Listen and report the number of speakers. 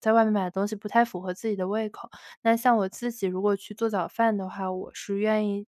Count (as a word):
one